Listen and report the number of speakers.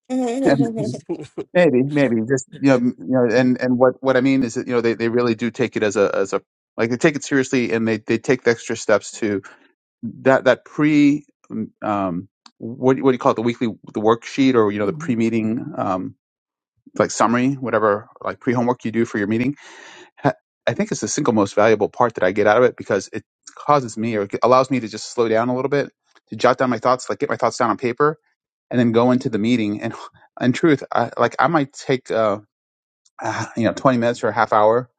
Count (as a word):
two